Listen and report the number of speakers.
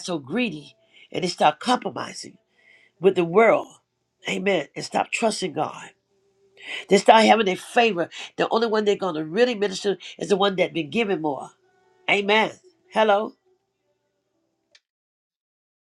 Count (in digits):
1